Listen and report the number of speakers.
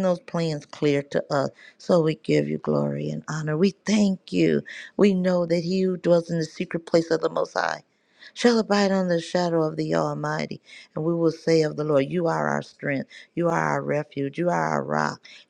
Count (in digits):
1